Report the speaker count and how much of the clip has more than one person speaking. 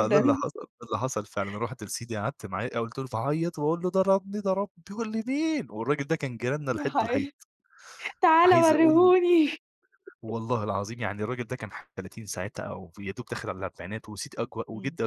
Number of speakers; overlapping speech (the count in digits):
2, about 10%